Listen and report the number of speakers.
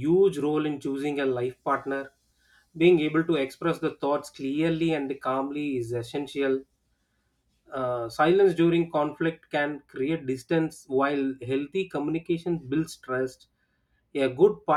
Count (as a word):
one